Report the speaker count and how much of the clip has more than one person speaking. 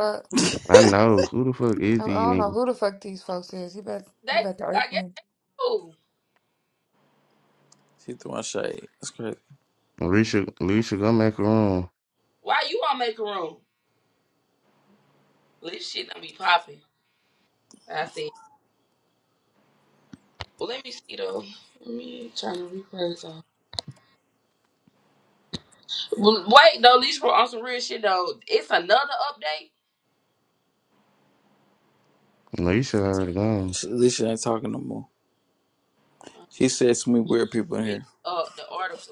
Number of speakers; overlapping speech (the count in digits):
4, about 4%